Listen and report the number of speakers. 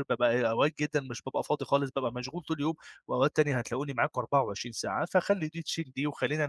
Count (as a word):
one